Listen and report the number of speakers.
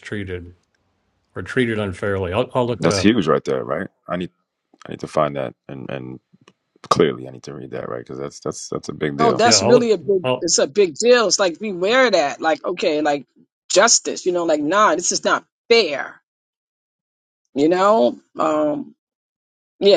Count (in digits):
3